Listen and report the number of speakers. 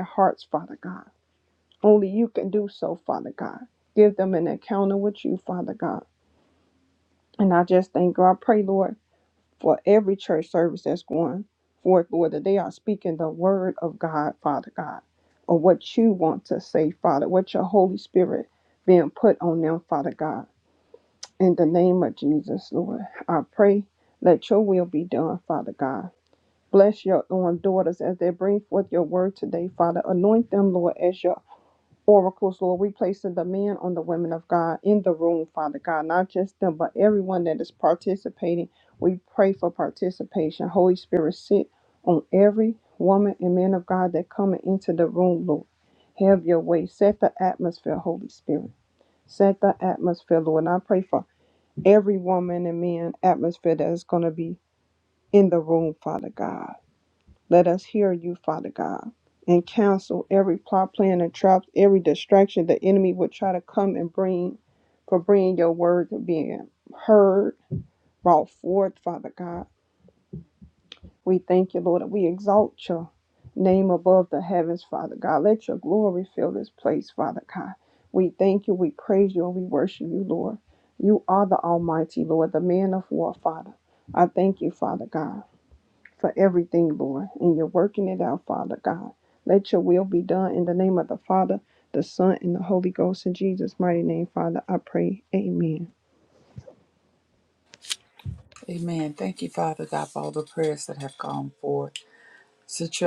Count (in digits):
2